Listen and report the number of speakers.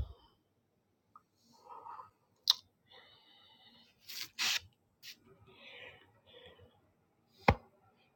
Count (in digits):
0